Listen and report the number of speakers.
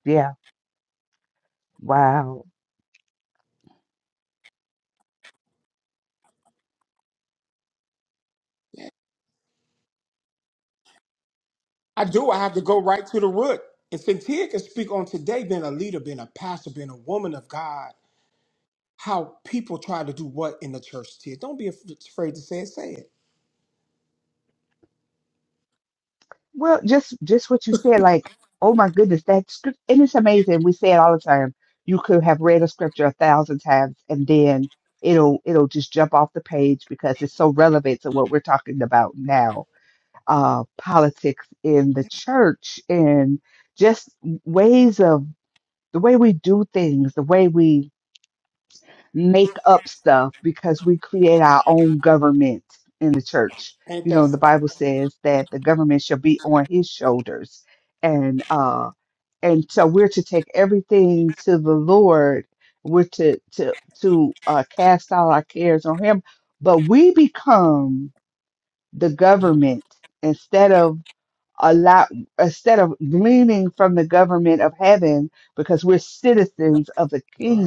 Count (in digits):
2